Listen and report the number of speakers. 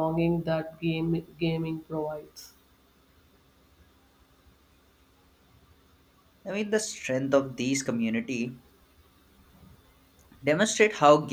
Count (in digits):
2